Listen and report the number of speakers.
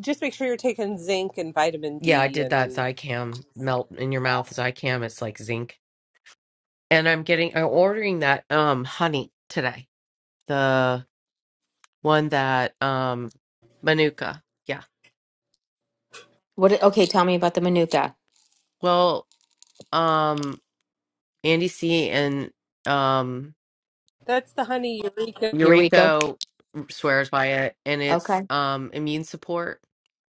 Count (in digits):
3